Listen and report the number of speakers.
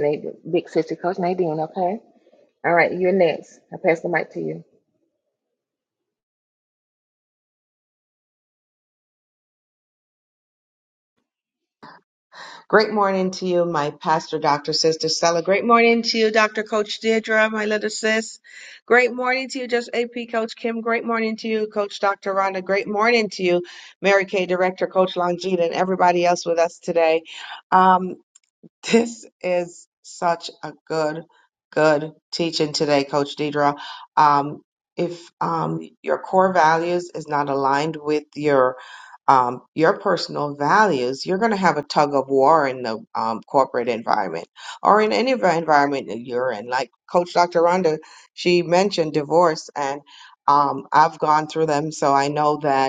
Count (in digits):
2